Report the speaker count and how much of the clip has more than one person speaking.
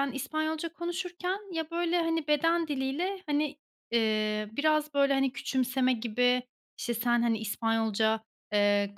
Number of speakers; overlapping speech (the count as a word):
one, no overlap